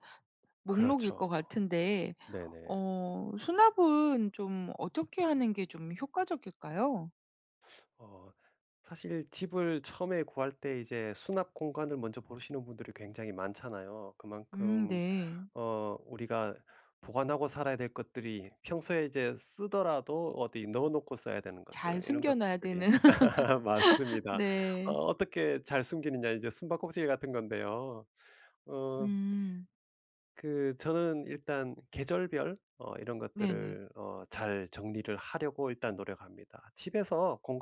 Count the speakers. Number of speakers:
2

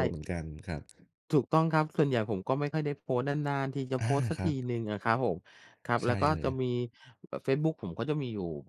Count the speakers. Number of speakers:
2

